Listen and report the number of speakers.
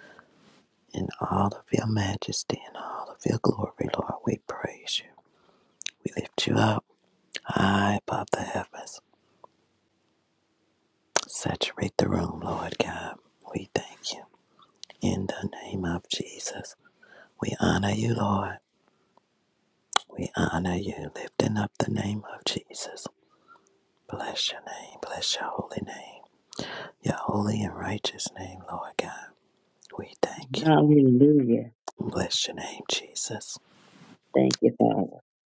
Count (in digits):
2